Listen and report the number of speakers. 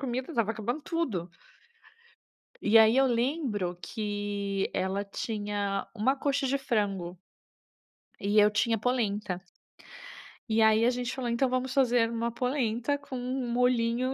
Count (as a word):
one